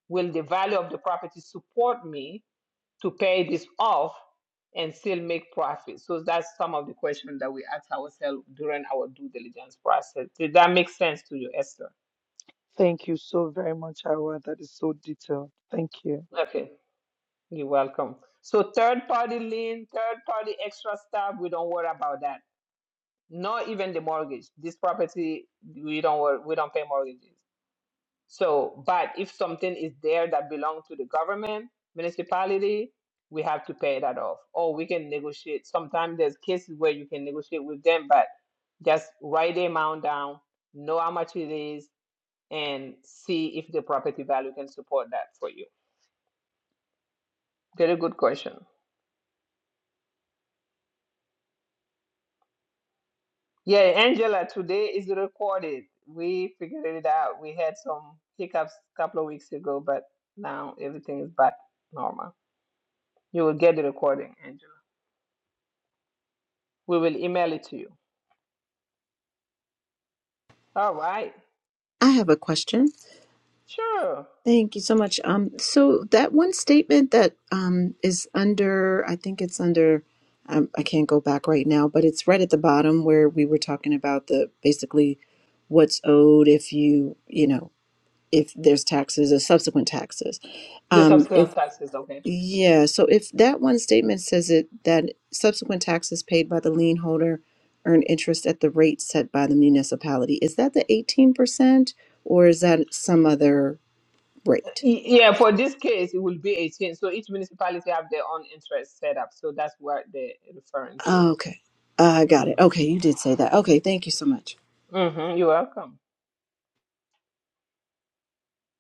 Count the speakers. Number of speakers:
three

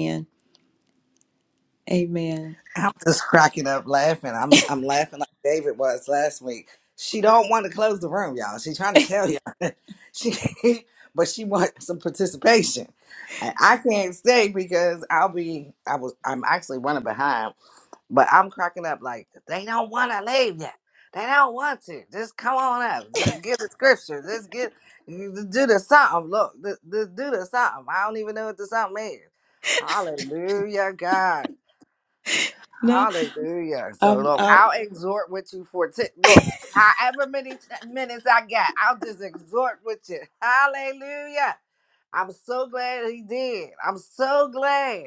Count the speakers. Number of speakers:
two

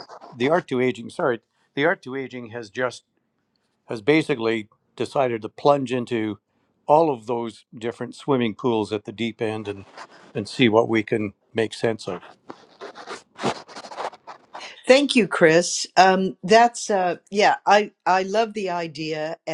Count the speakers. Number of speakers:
two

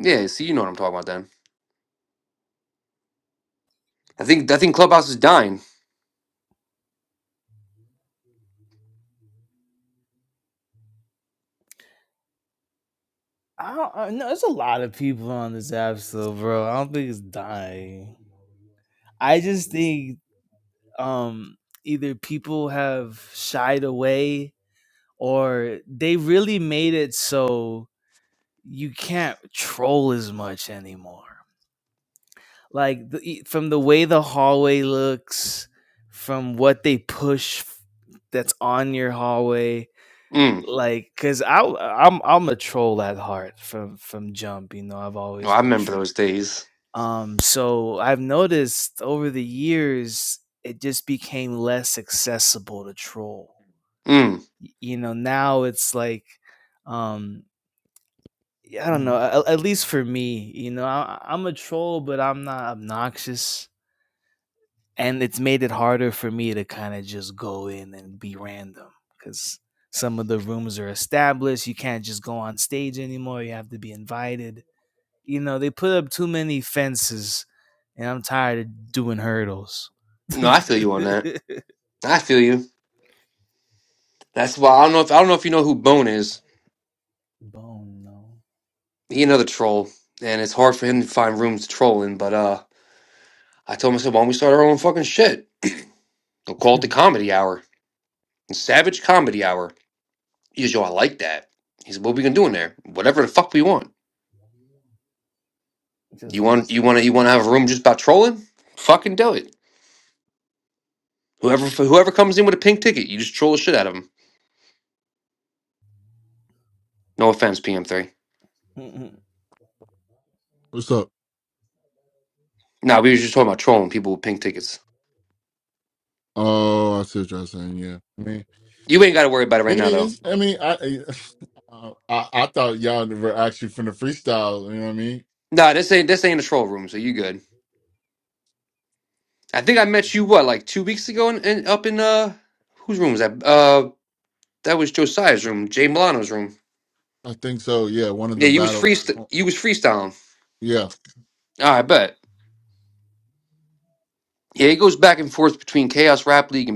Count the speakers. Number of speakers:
three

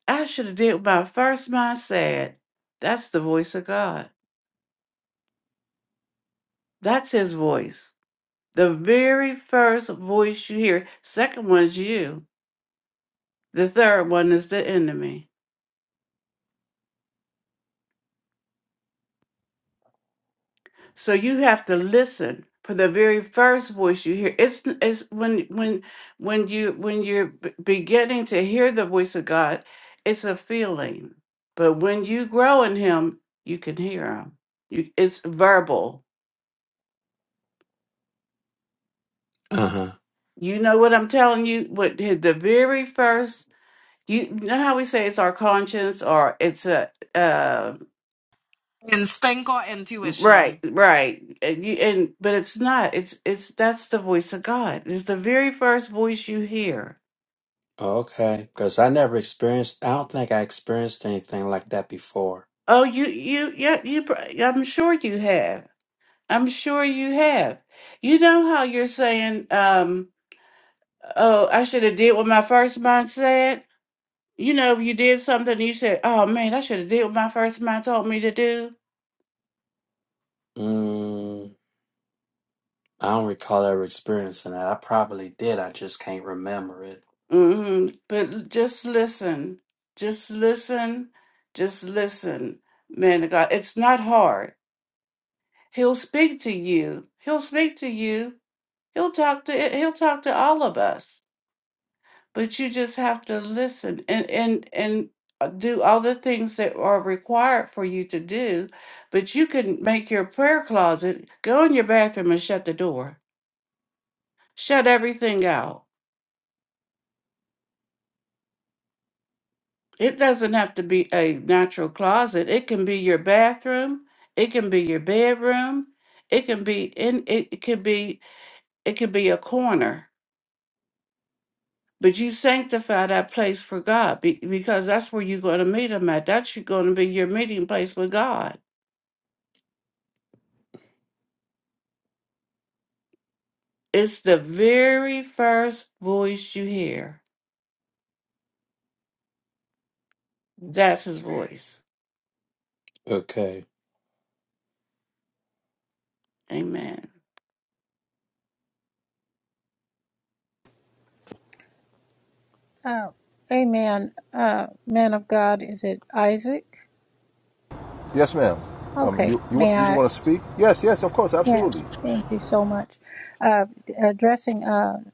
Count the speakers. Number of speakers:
five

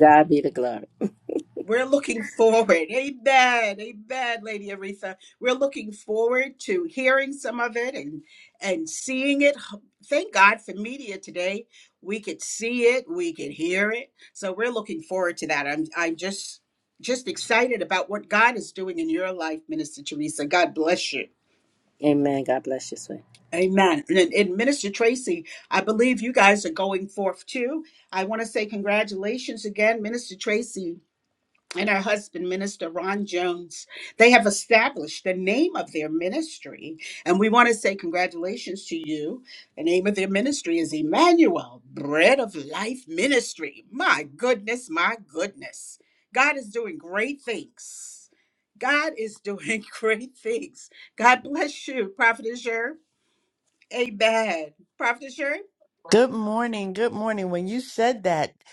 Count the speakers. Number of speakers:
three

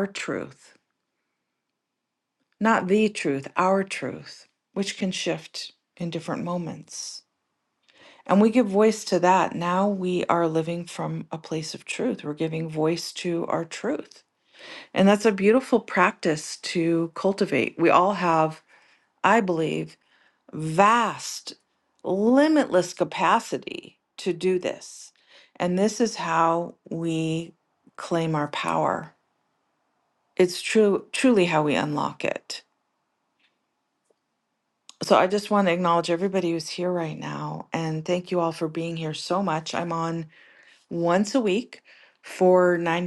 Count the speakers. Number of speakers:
one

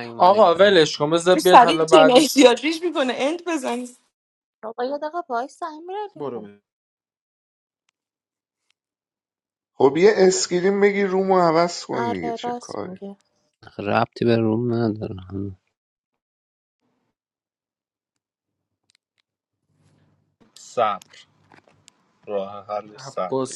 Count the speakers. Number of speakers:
six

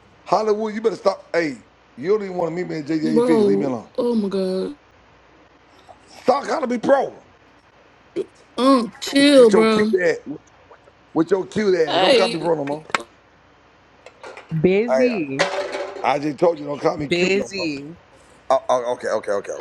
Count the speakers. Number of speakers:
three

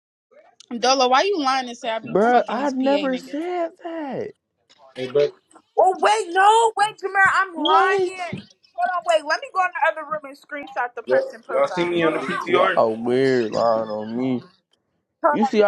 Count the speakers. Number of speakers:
four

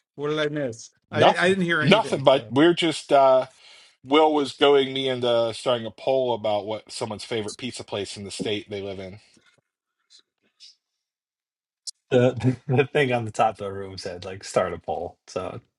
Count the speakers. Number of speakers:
three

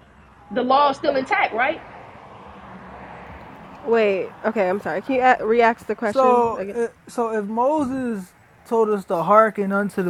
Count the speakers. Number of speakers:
three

